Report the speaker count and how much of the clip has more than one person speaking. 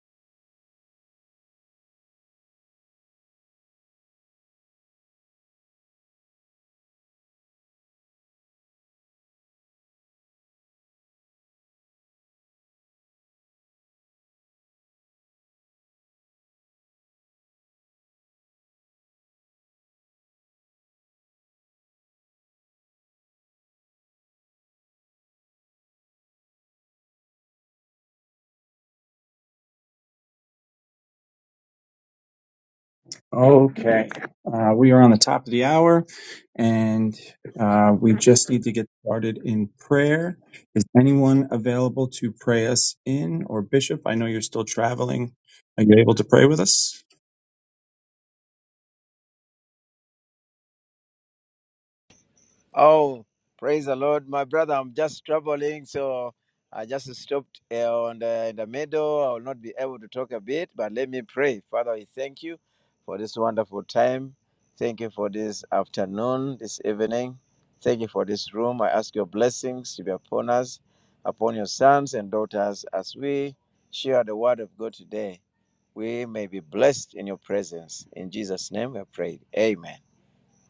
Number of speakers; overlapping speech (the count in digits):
2, no overlap